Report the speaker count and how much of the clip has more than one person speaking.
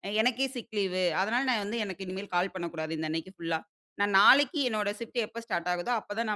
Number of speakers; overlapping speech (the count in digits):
1, no overlap